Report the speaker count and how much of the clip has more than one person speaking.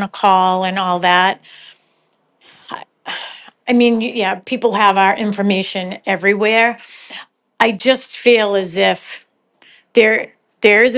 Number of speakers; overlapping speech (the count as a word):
one, no overlap